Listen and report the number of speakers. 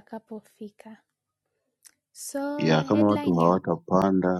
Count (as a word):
two